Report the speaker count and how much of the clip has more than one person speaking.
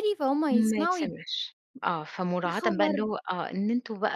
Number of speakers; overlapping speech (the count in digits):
2, about 29%